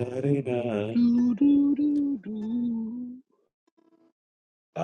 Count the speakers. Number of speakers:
2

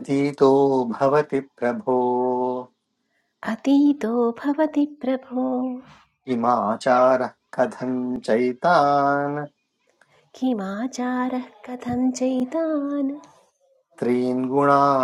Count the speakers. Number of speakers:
2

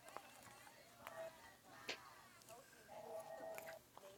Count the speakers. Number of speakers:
0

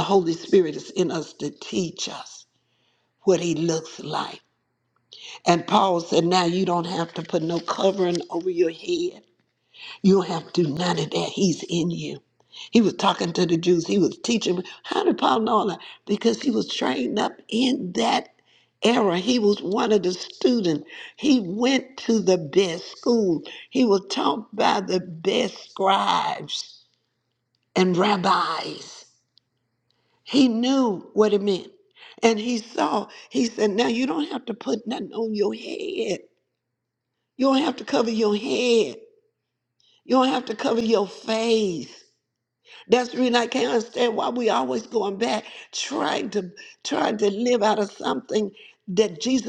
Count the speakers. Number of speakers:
1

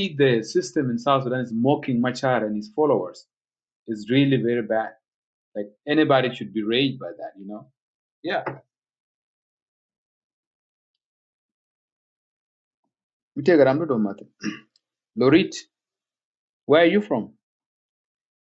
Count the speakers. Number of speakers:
1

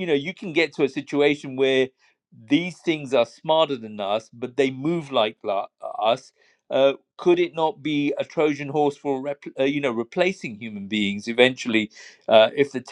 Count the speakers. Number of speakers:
1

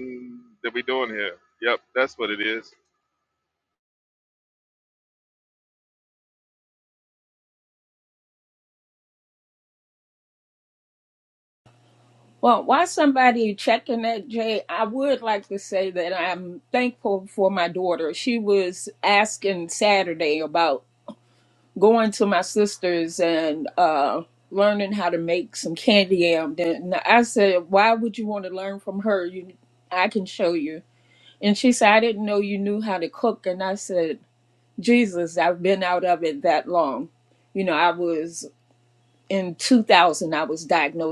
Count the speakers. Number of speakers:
2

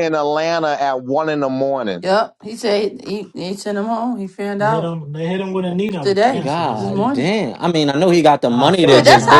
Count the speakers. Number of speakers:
4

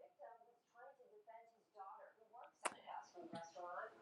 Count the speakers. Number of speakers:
0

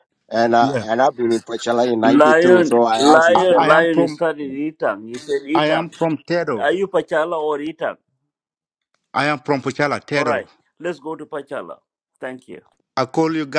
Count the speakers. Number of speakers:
3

